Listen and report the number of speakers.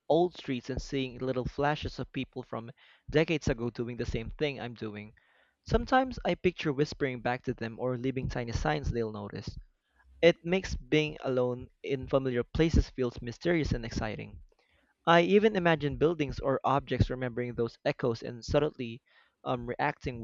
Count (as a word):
one